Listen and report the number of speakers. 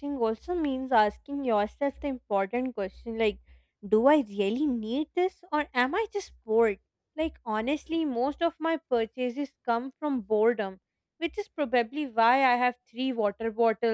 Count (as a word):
one